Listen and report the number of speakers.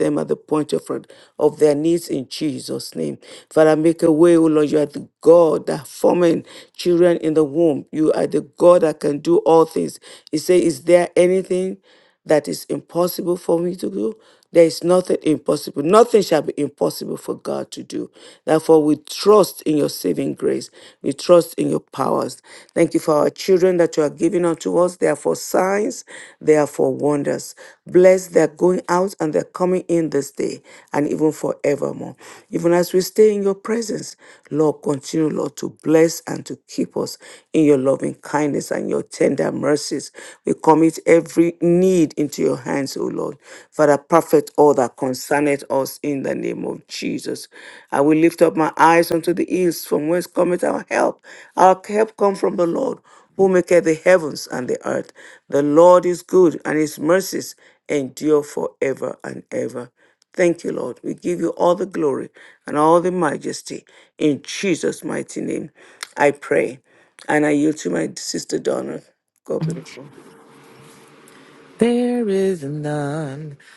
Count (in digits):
2